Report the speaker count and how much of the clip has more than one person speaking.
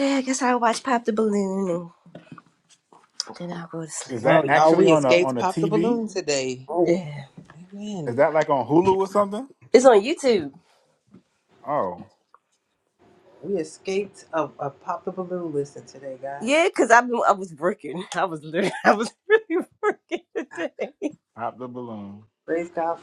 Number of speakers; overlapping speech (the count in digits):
3, about 9%